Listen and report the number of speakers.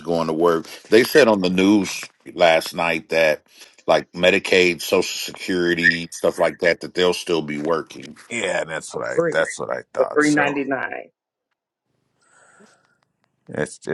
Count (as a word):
three